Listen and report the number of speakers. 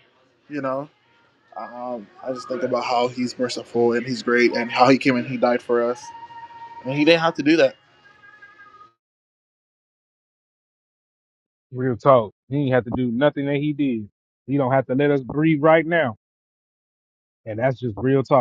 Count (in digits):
2